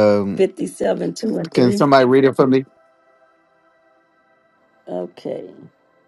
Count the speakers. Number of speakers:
2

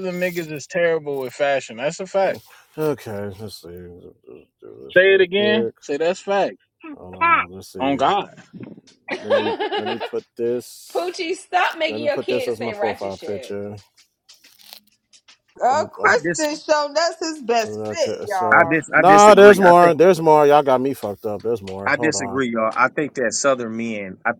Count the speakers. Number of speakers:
5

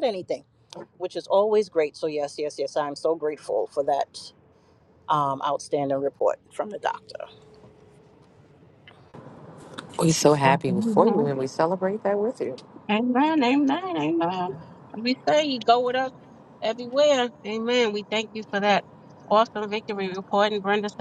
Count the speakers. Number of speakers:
3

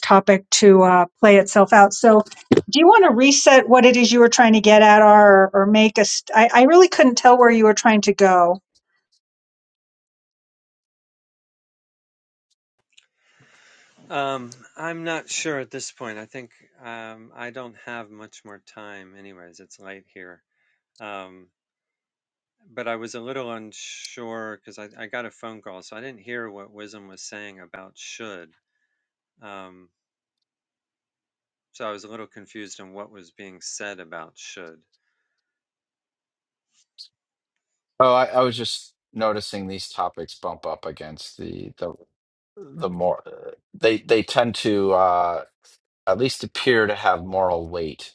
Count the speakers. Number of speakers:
3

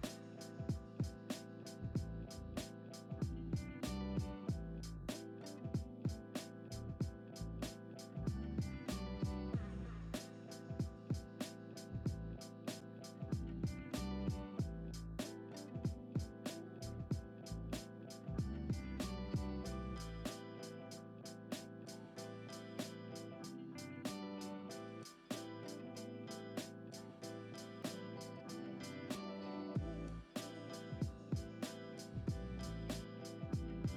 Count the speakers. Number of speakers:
0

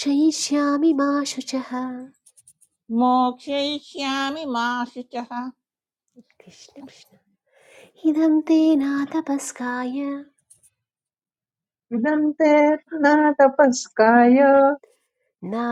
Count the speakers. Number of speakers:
3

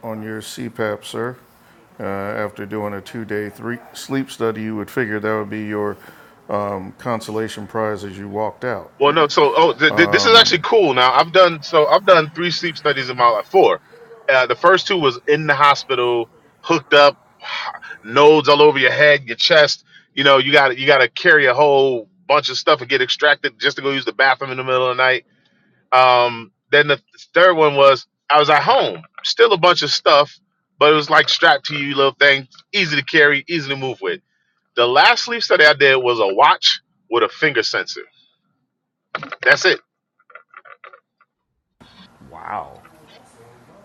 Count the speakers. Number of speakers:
2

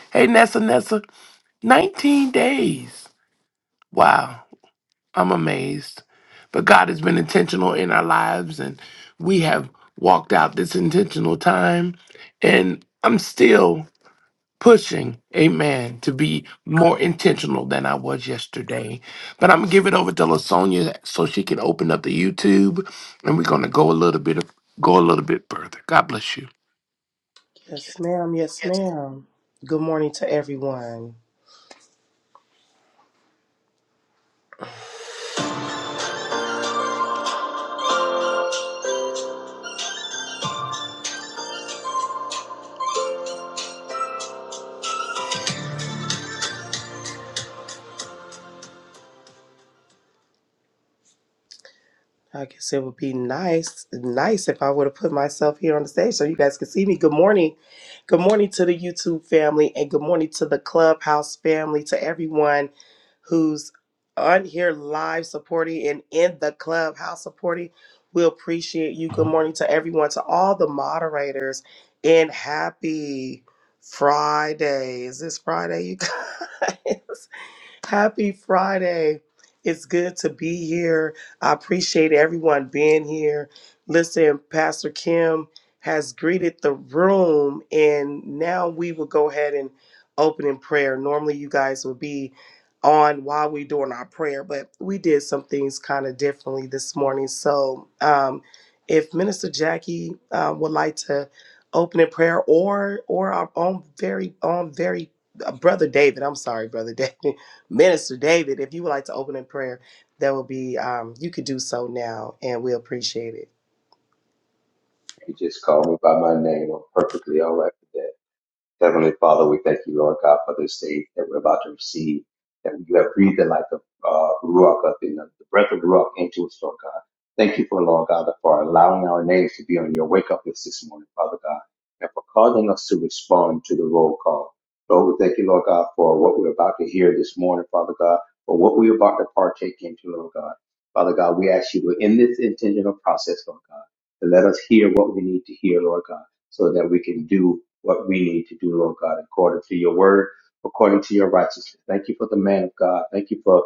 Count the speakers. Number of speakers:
3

